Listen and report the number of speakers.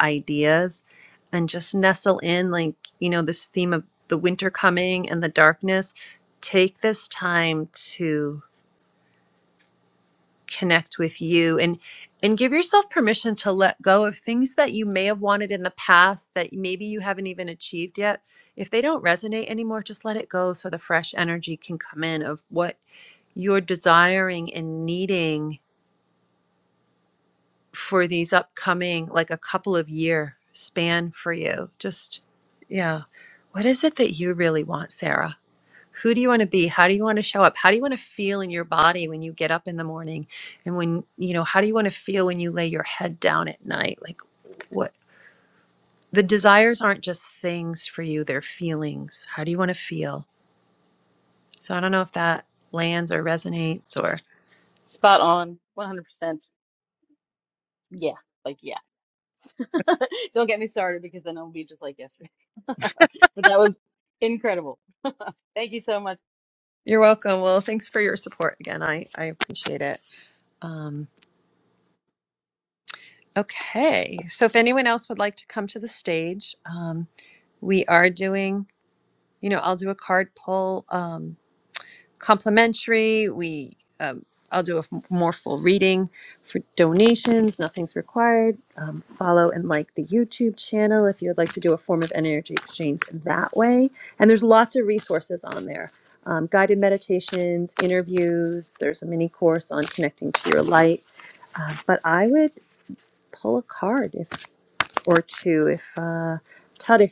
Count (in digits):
2